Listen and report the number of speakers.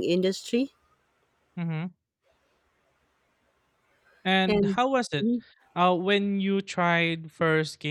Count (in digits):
2